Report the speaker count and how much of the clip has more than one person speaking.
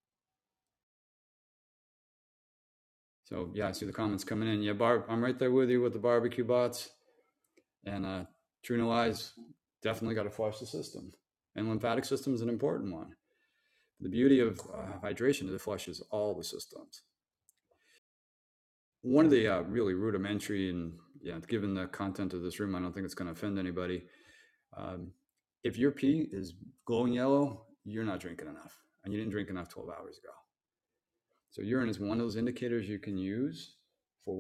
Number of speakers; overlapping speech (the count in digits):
1, no overlap